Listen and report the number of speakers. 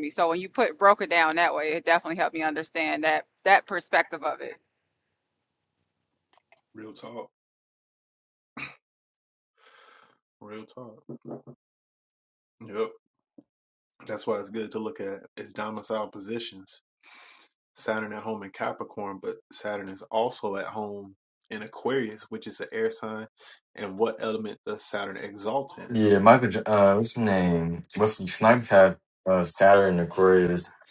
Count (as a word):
three